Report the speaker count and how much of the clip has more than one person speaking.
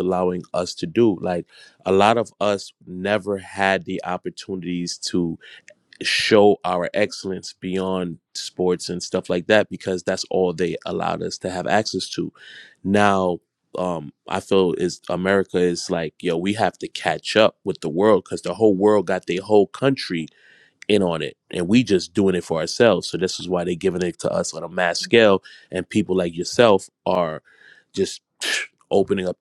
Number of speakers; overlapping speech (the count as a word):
one, no overlap